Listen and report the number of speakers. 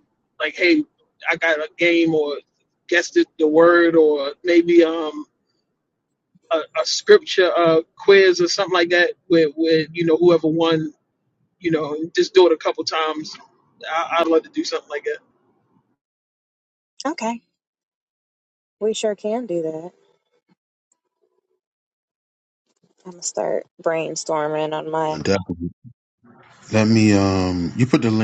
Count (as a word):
three